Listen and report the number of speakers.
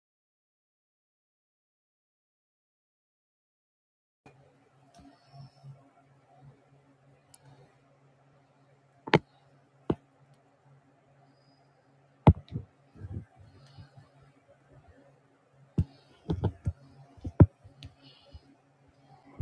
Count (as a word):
zero